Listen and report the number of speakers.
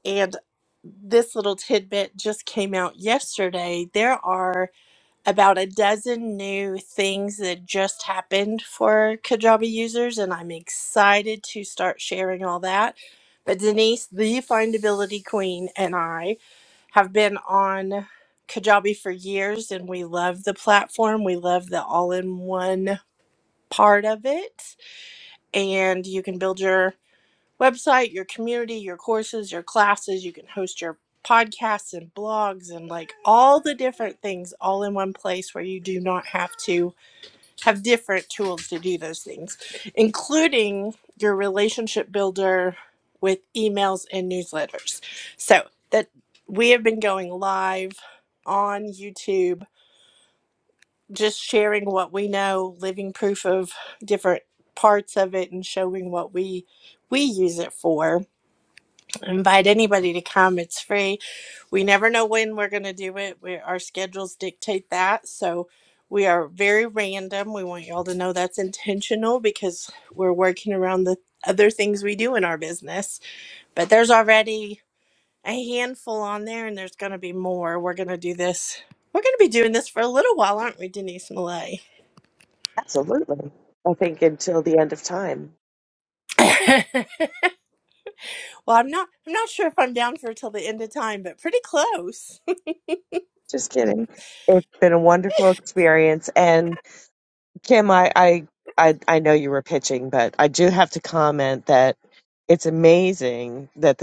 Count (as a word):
two